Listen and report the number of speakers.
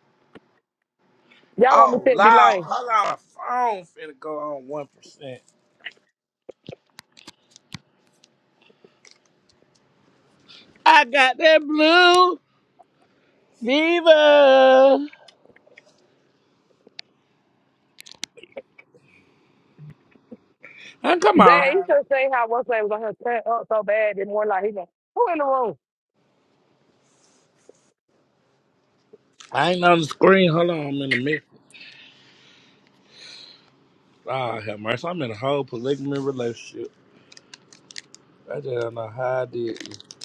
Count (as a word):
two